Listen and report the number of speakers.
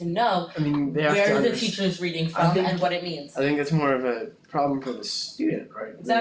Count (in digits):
2